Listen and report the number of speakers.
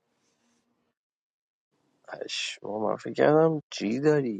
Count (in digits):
1